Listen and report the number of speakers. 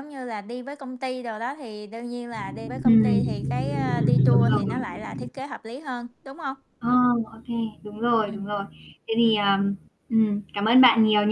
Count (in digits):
2